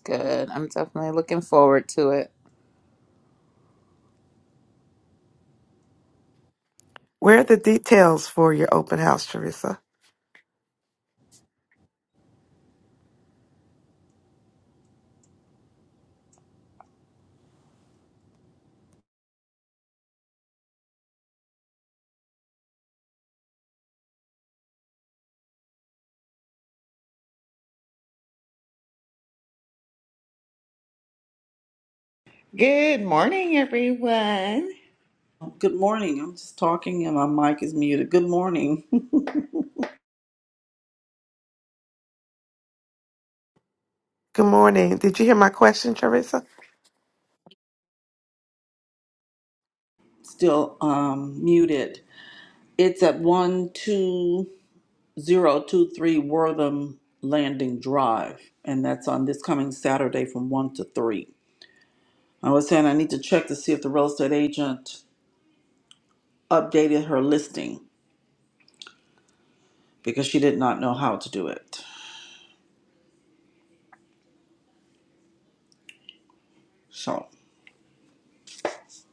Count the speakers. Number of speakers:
four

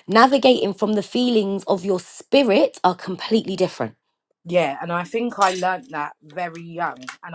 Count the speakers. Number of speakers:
two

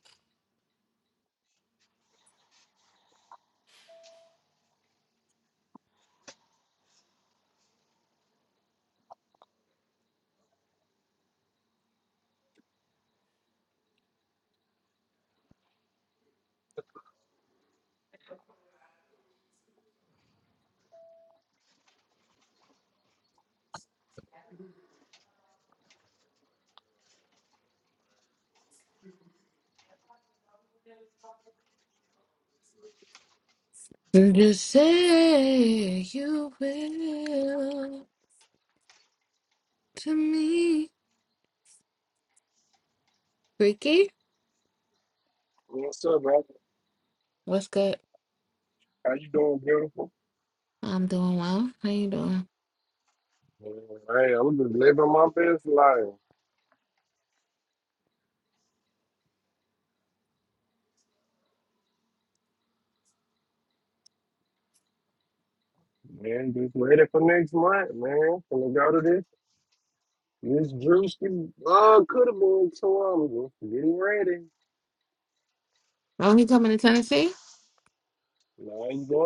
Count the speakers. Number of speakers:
two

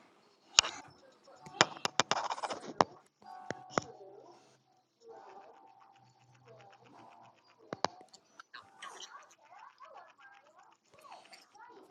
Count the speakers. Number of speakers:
zero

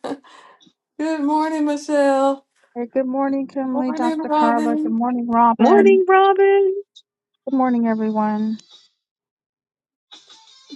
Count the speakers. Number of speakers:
three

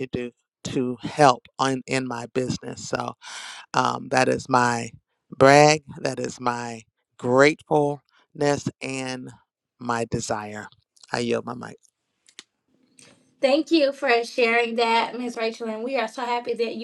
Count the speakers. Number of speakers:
two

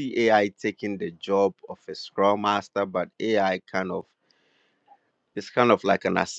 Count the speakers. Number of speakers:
one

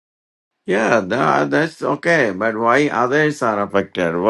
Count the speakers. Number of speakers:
one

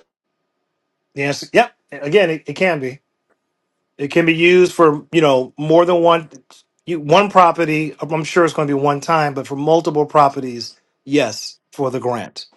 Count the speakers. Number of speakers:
one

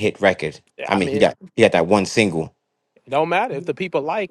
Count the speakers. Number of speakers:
two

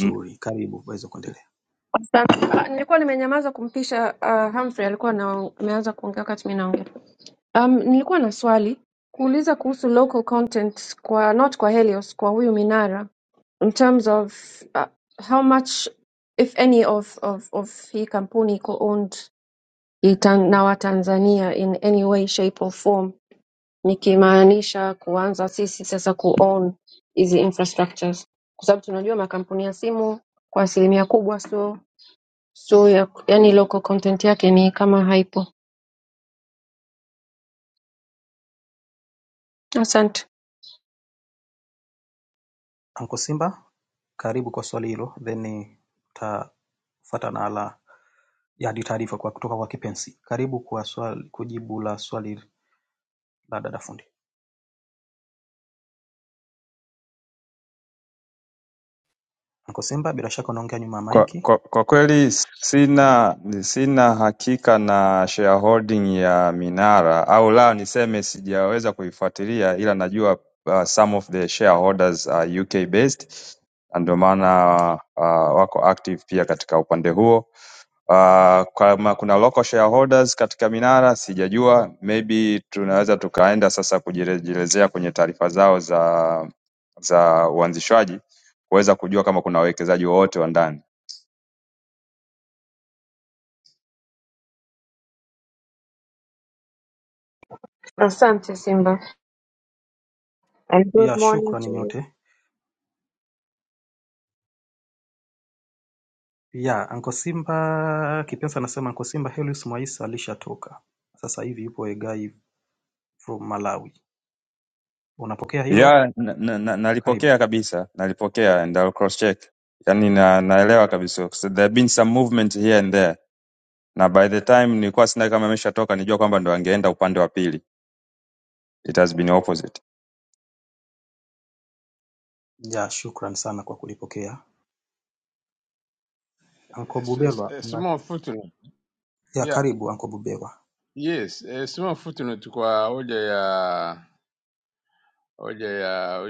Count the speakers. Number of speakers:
four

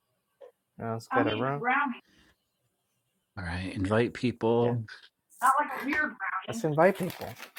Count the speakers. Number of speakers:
three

